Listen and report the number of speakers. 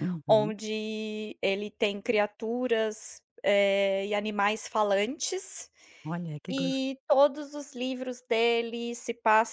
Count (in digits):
2